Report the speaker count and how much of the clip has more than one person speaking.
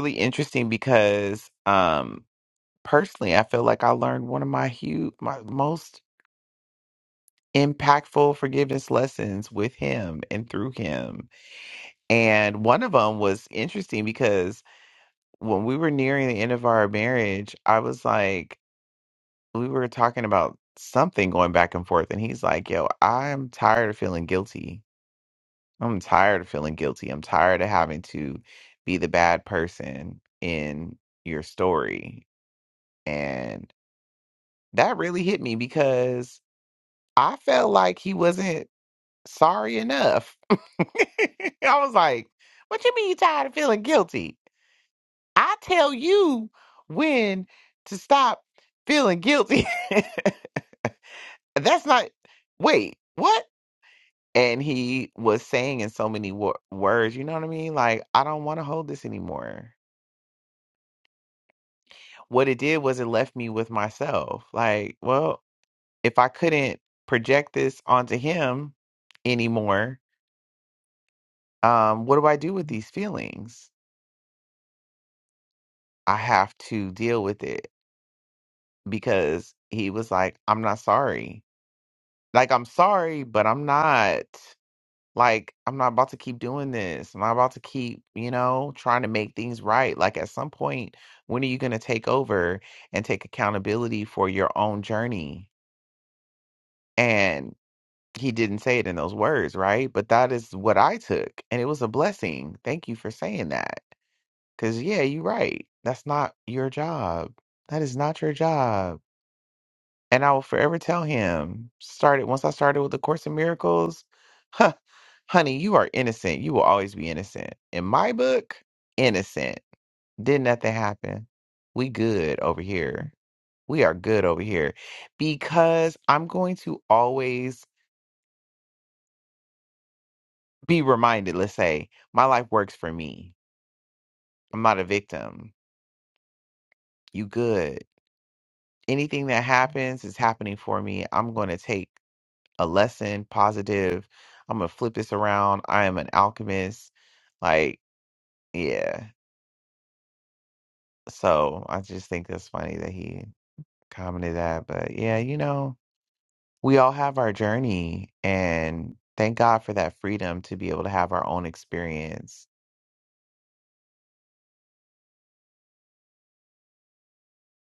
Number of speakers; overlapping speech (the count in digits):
1, no overlap